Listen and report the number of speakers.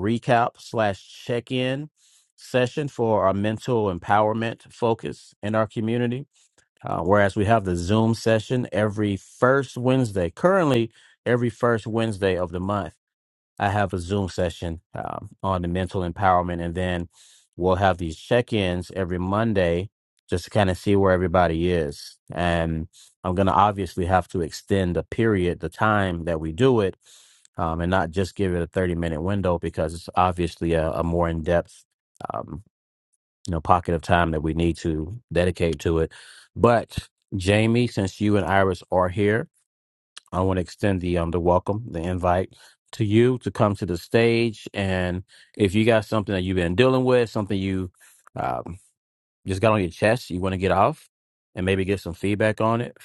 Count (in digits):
1